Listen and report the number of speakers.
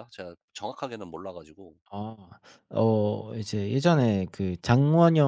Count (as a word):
two